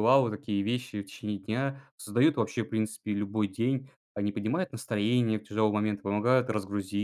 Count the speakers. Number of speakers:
1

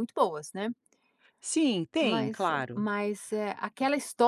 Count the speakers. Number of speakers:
2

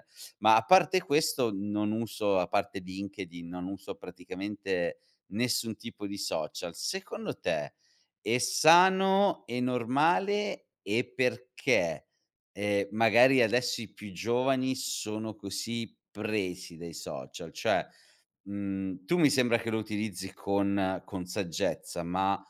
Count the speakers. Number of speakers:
1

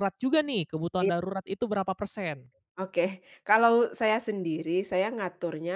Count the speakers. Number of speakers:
2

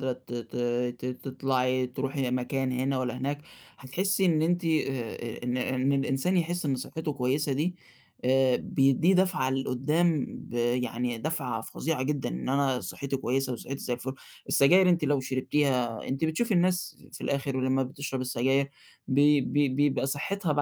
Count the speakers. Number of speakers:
1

